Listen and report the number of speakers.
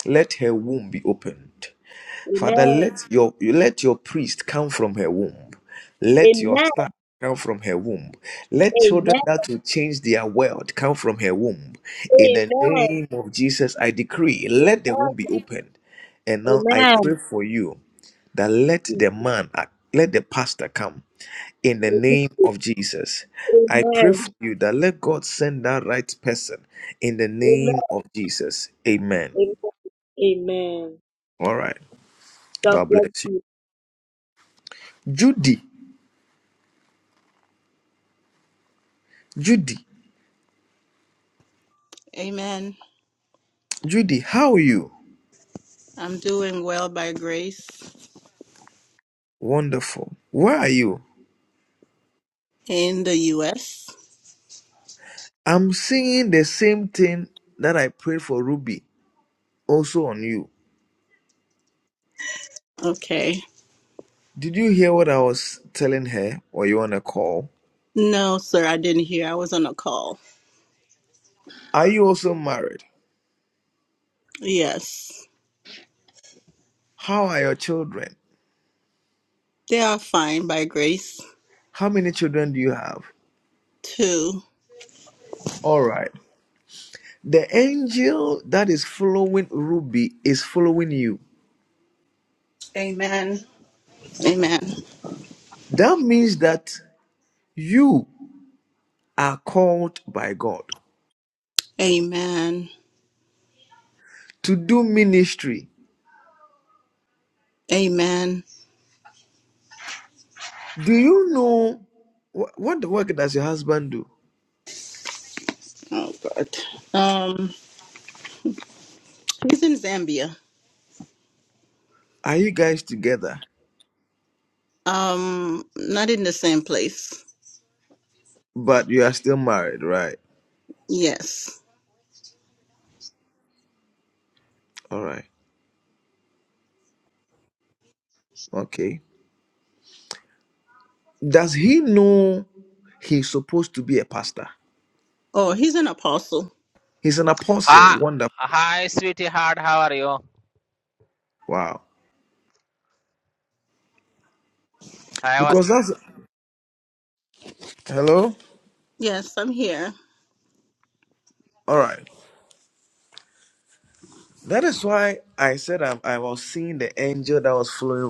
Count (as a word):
four